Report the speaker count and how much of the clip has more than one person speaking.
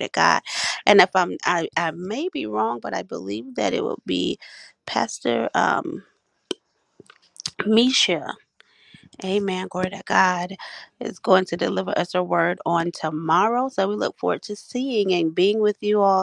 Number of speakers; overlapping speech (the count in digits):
1, no overlap